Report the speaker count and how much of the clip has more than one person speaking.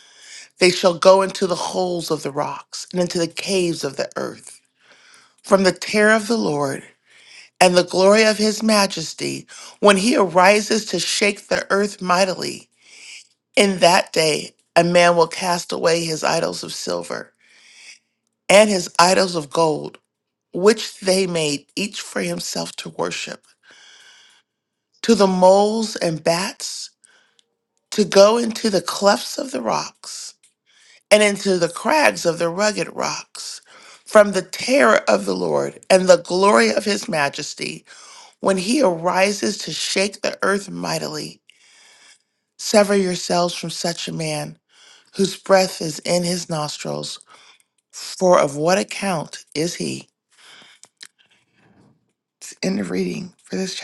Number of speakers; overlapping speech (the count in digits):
1, no overlap